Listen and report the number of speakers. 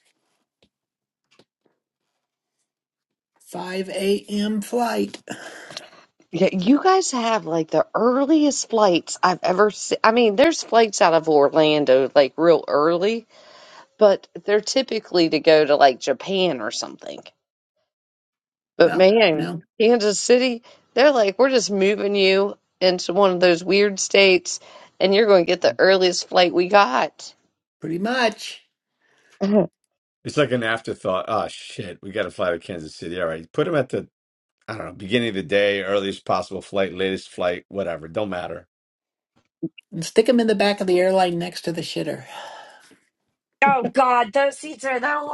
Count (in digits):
4